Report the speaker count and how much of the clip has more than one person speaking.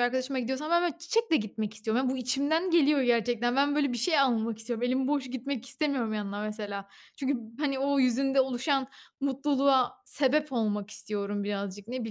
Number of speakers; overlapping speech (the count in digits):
1, no overlap